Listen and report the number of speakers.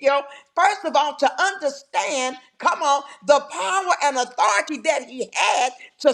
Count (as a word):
one